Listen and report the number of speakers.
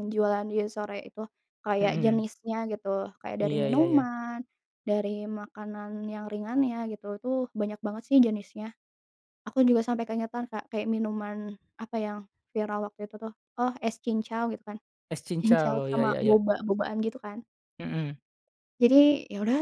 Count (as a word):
two